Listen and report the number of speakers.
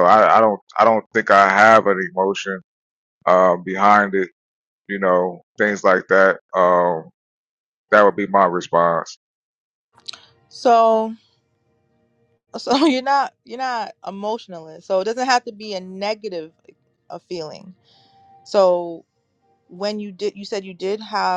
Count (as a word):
two